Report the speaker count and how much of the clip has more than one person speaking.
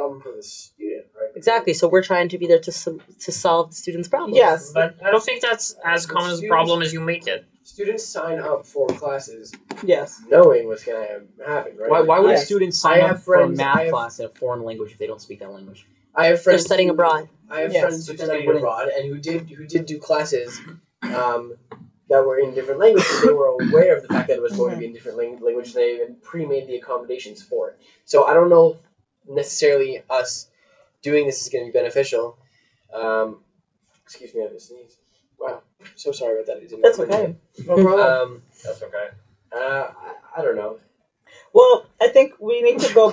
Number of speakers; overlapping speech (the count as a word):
five, about 15%